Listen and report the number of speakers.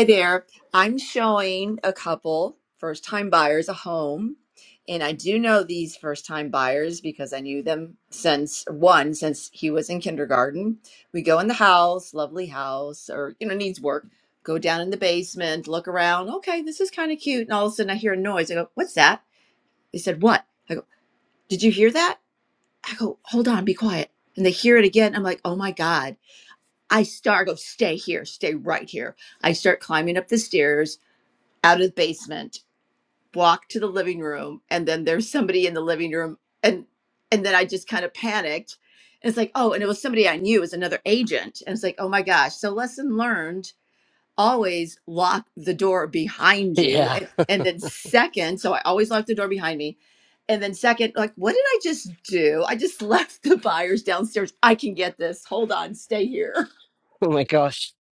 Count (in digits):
2